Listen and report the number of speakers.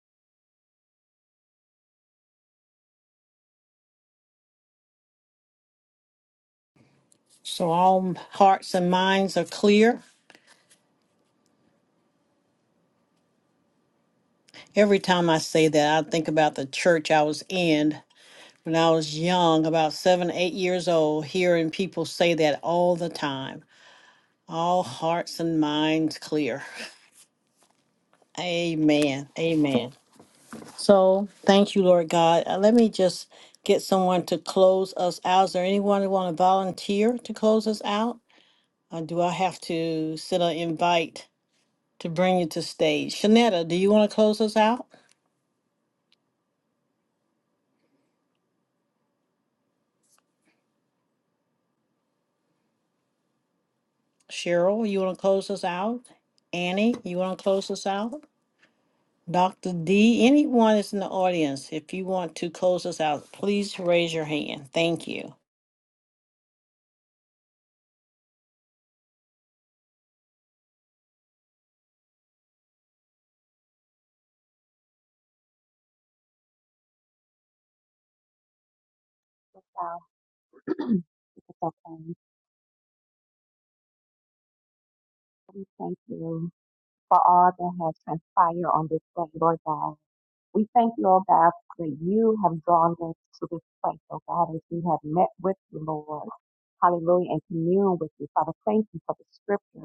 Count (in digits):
2